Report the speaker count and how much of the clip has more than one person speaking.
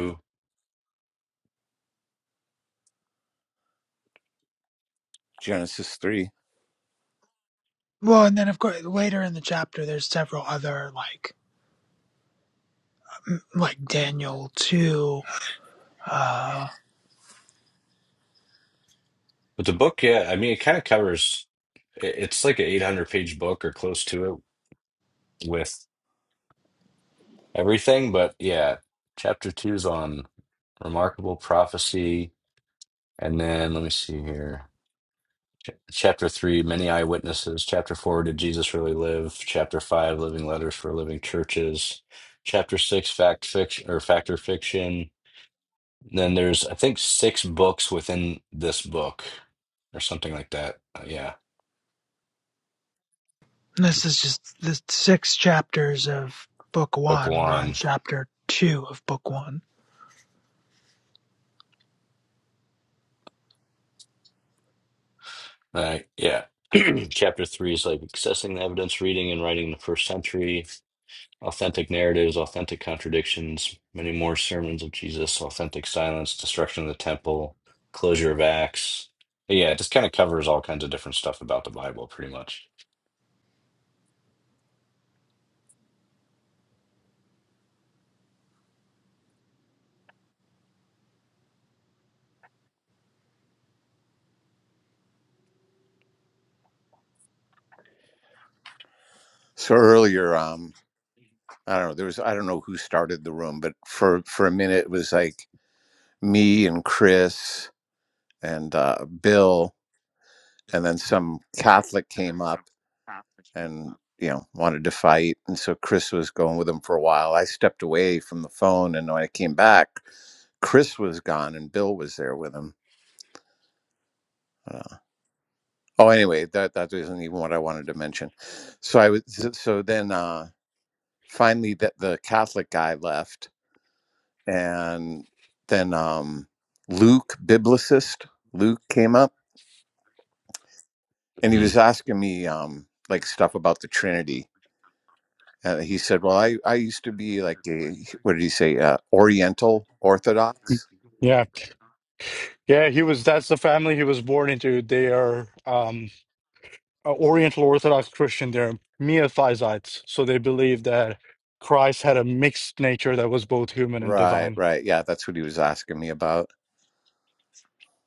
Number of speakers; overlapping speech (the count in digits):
4, about 1%